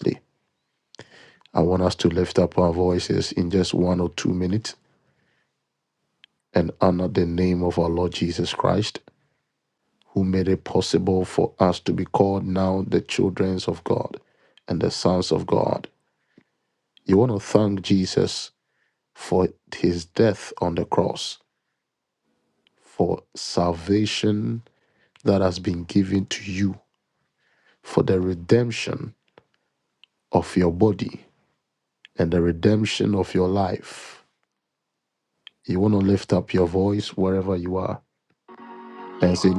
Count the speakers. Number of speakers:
1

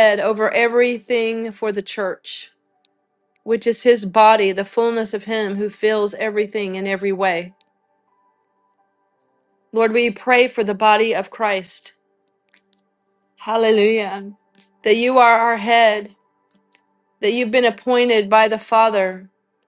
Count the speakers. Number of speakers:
1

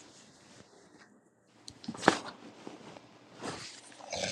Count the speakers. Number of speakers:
0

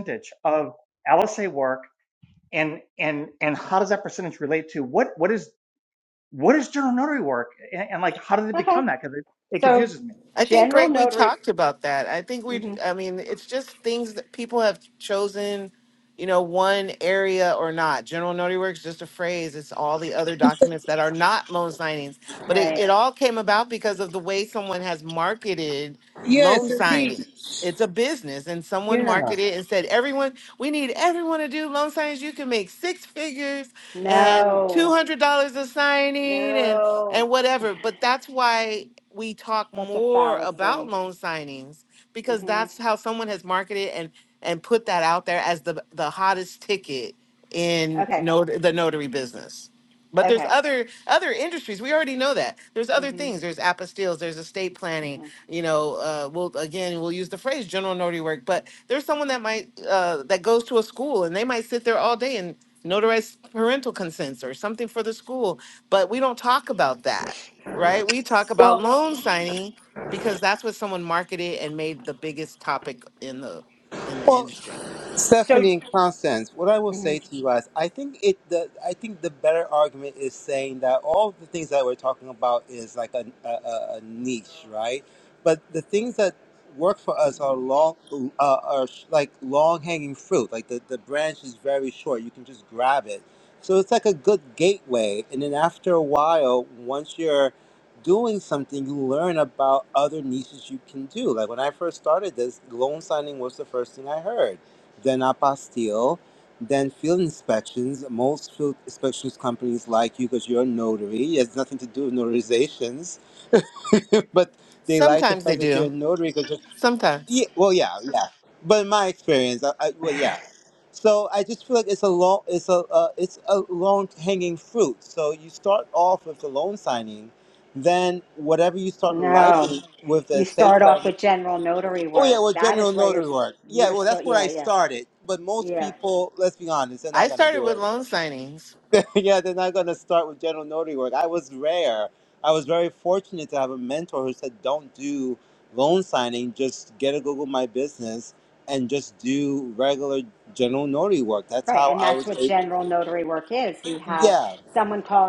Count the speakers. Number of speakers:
4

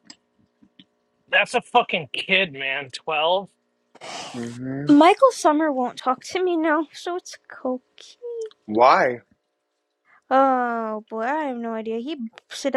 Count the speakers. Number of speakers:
3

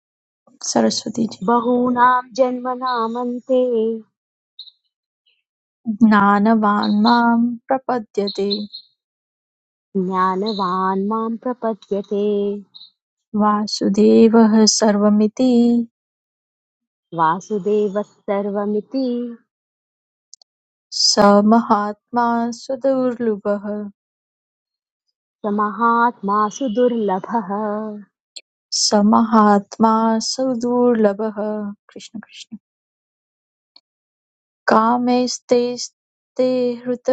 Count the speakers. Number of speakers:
2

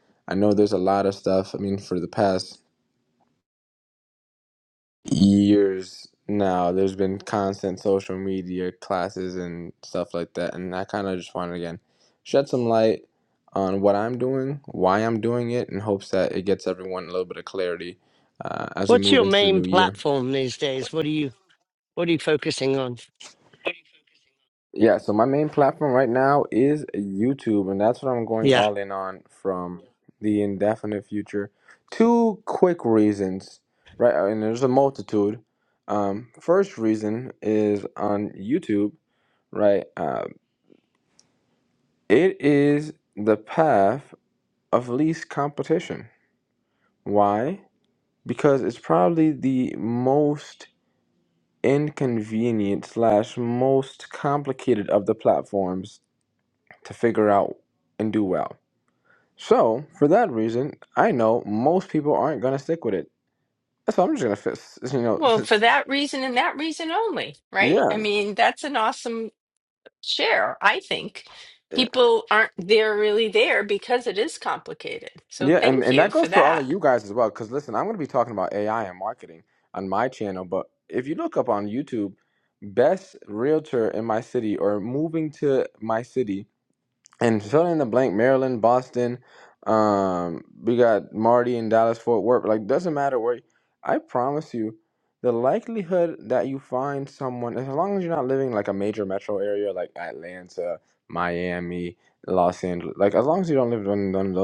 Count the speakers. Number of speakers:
3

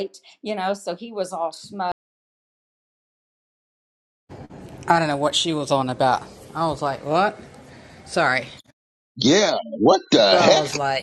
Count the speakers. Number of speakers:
3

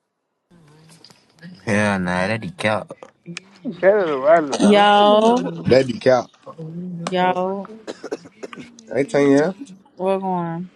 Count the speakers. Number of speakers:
4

